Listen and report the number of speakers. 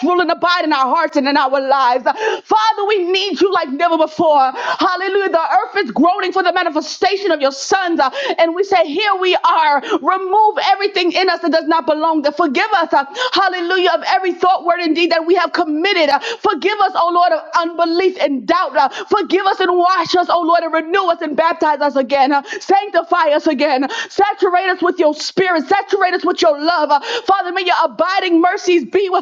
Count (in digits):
1